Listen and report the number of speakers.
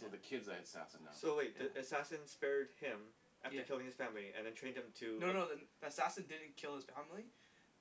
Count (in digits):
3